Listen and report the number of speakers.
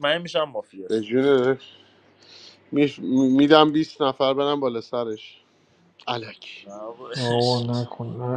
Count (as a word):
three